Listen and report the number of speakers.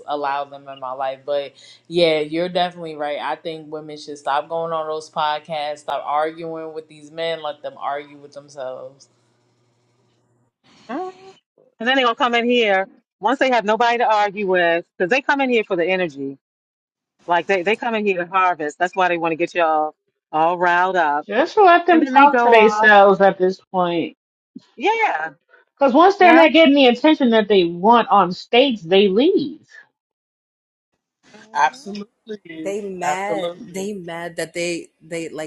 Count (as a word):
five